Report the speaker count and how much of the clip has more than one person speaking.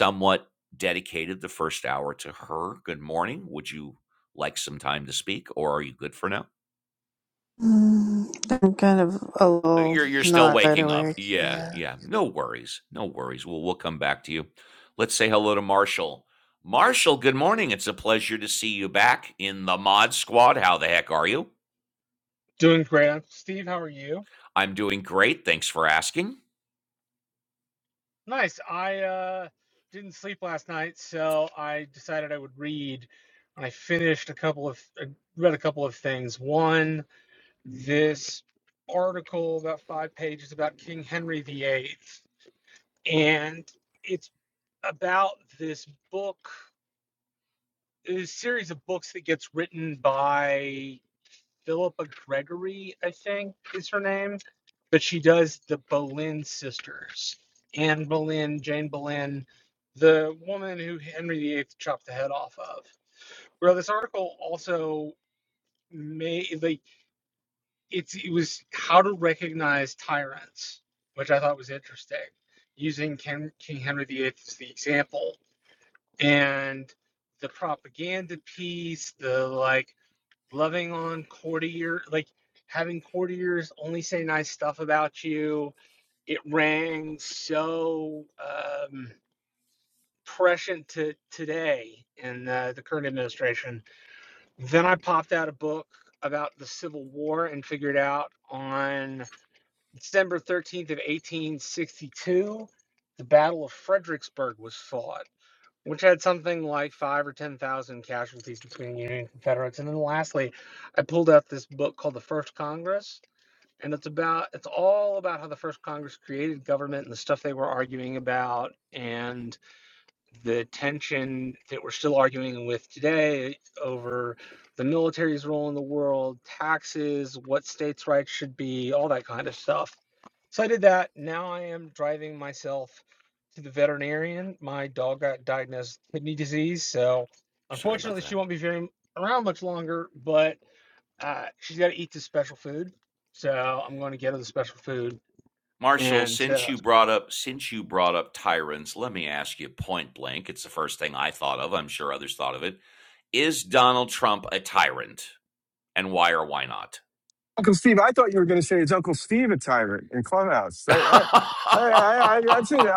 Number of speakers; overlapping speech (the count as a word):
four, about 2%